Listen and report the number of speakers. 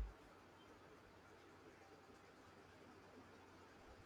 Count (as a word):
zero